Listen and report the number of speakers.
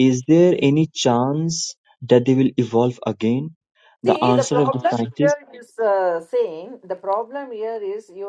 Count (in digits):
2